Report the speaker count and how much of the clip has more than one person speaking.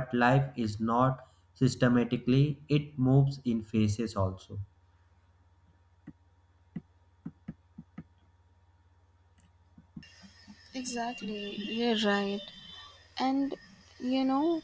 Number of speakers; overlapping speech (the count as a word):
two, no overlap